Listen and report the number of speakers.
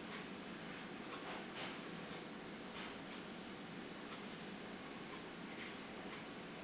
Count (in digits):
0